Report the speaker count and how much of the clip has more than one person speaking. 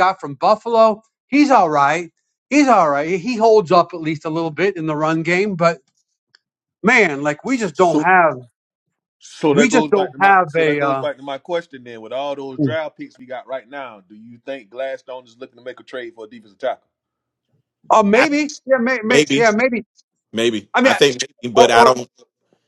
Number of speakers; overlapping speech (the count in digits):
3, about 13%